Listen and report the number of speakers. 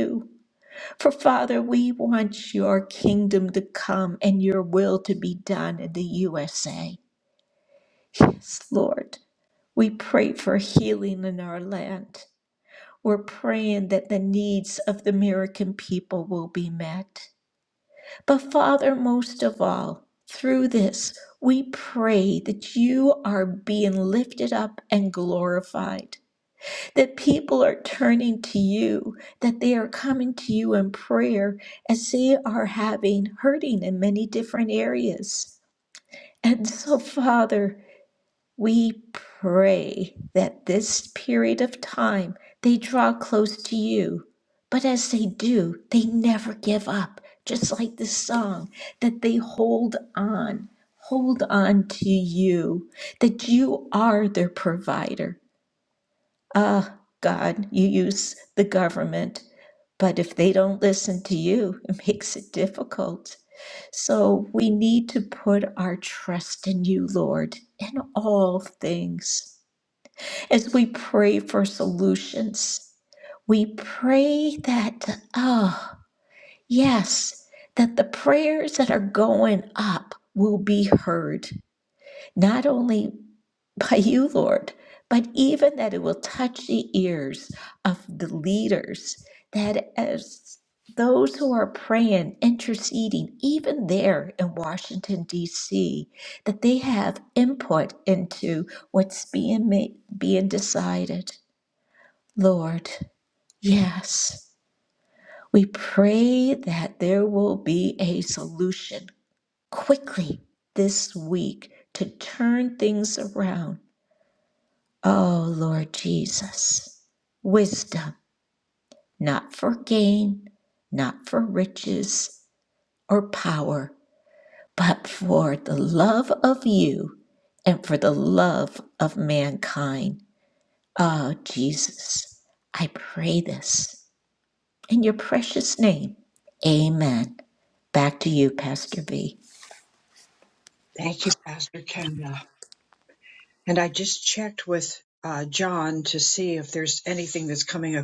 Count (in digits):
2